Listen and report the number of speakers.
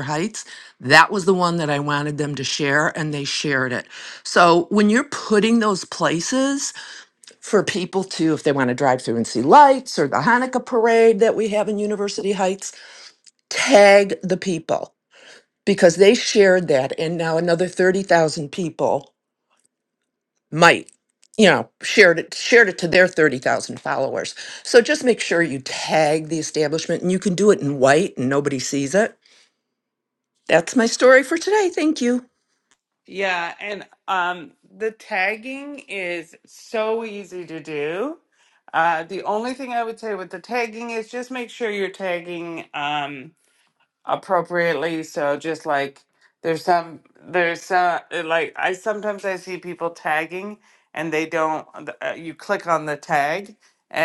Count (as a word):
two